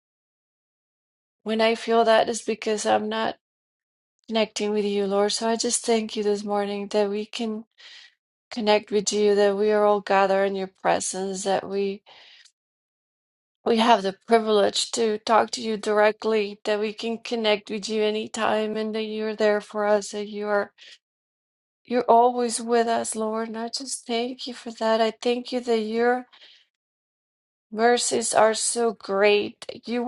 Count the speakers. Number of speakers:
one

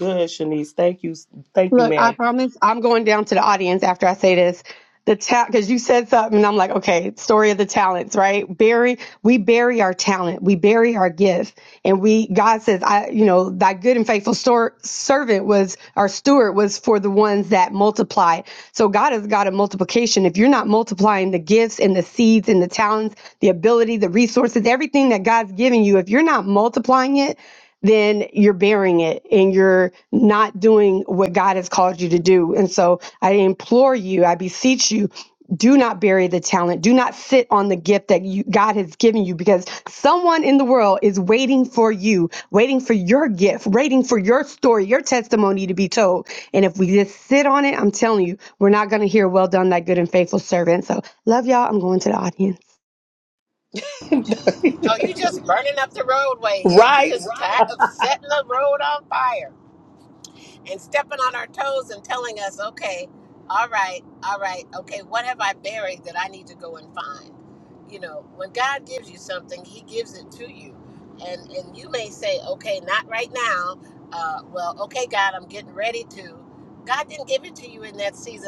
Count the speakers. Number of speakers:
three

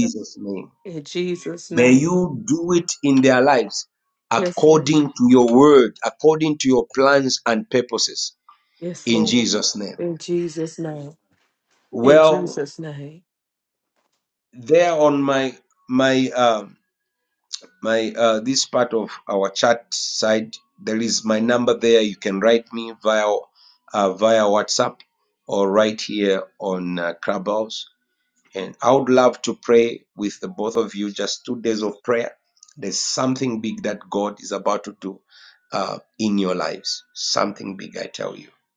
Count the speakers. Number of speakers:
two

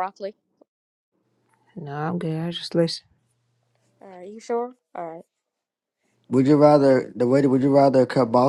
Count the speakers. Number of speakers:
three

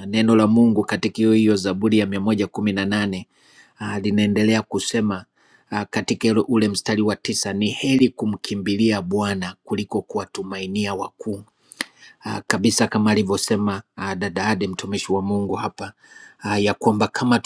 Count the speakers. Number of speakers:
one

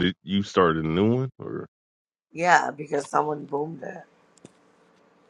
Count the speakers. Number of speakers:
two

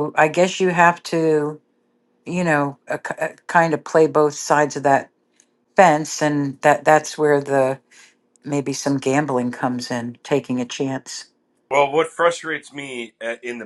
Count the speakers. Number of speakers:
two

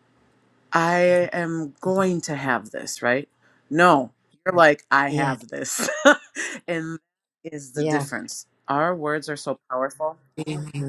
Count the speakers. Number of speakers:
two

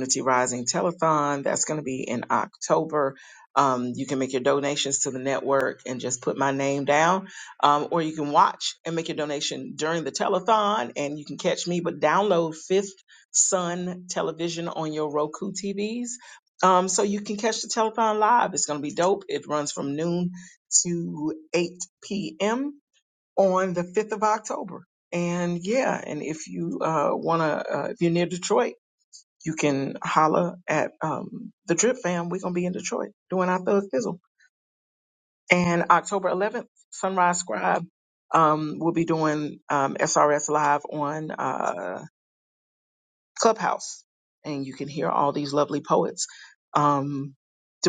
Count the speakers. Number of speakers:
one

